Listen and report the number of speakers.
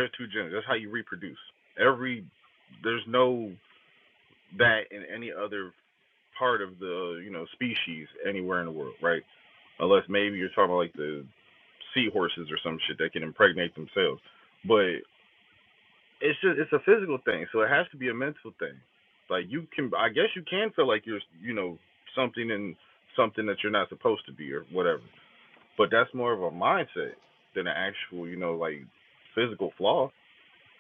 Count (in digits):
1